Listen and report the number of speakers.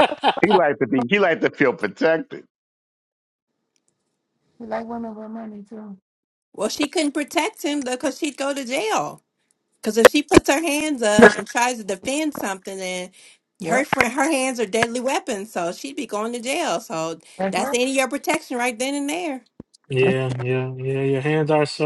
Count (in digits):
4